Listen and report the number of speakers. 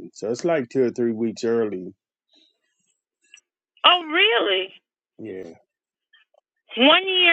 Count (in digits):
2